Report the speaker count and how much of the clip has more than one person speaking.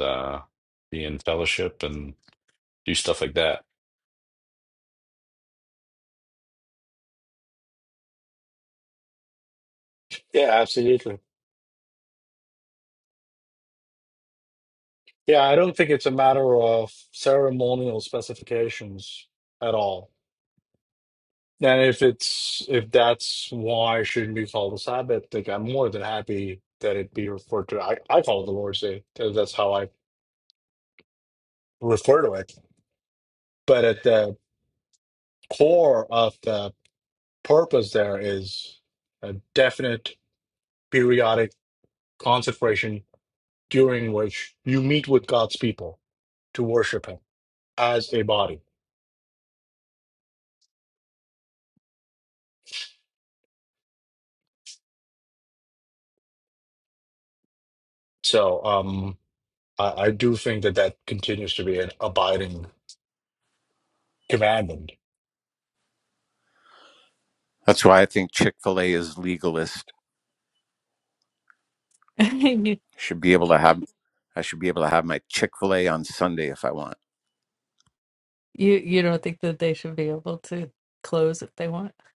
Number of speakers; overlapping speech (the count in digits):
4, no overlap